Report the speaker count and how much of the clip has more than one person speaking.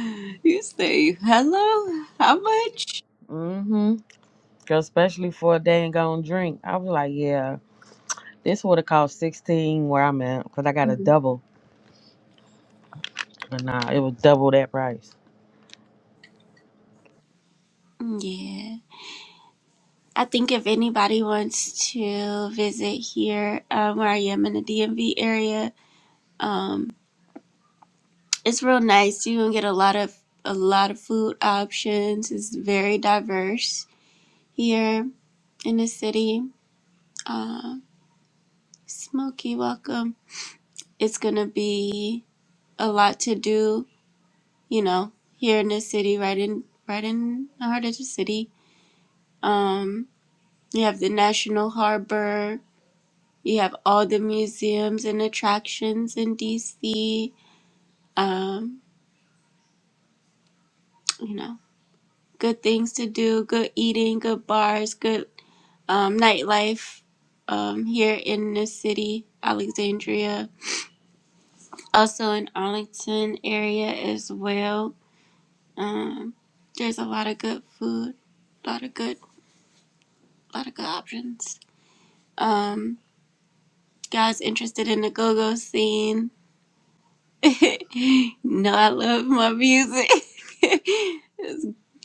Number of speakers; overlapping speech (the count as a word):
two, under 1%